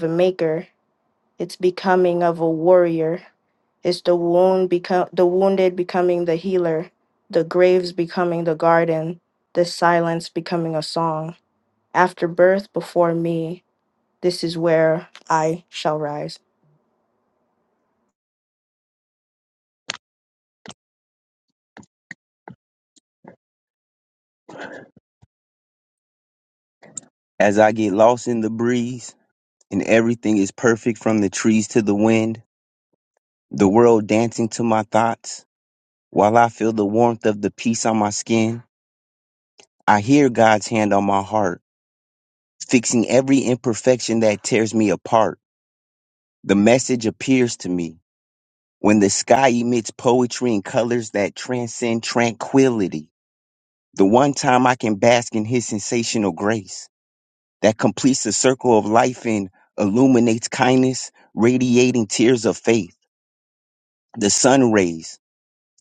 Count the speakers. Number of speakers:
2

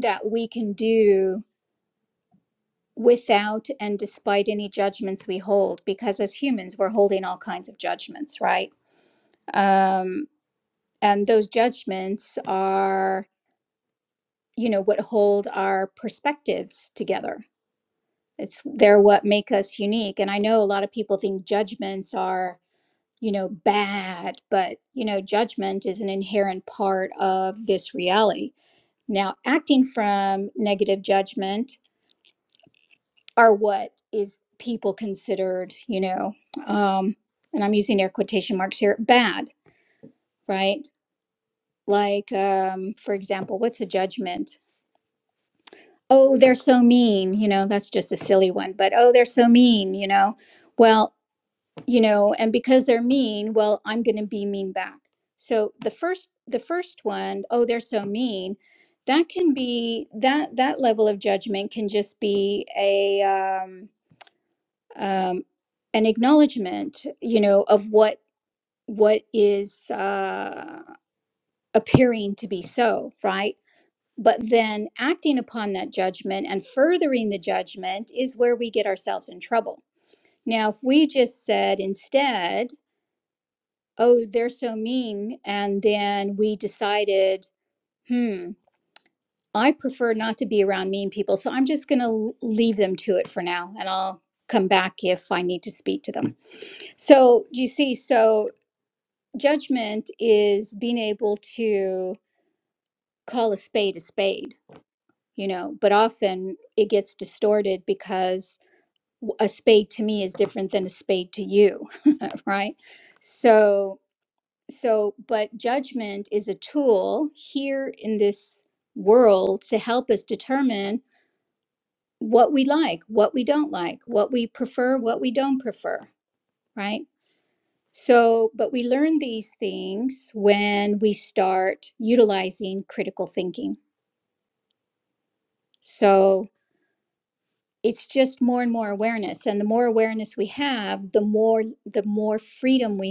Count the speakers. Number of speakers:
1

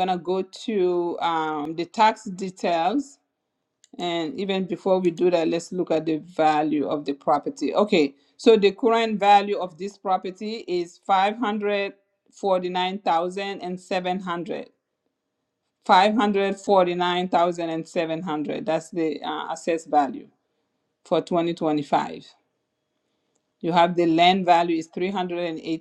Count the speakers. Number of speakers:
1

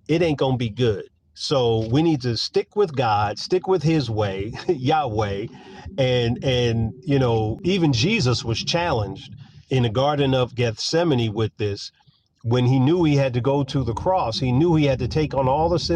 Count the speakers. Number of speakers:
1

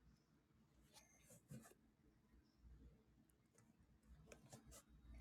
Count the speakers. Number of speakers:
0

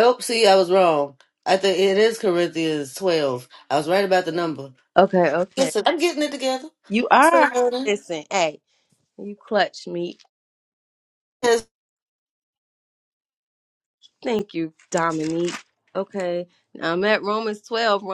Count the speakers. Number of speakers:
2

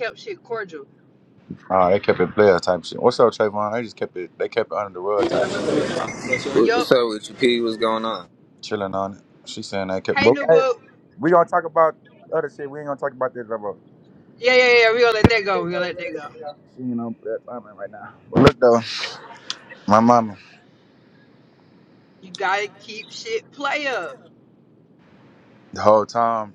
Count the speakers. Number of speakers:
3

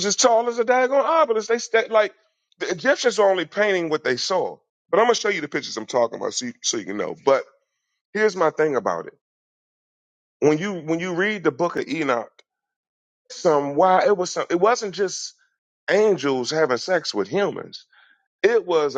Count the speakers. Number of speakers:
1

